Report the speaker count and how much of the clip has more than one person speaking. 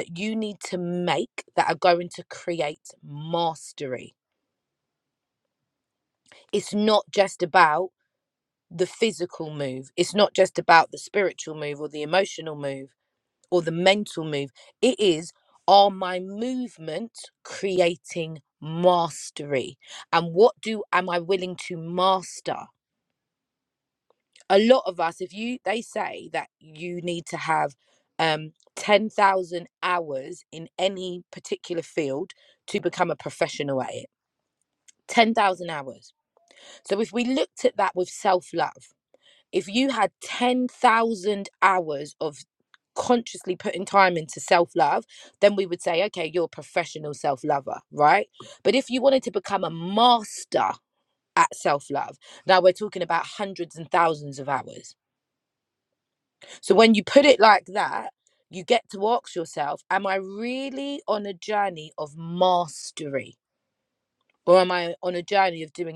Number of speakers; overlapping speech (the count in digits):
1, no overlap